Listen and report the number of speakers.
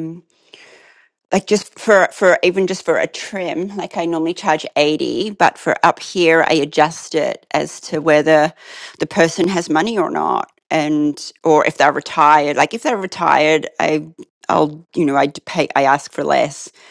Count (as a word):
one